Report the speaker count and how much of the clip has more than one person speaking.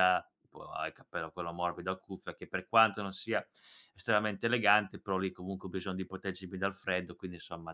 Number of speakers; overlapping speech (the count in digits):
1, no overlap